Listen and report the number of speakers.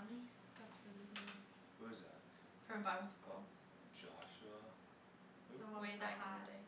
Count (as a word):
three